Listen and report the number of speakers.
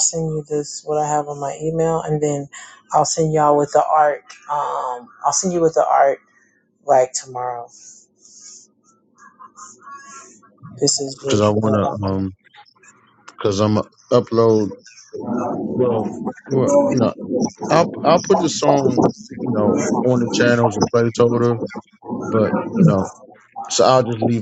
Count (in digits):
2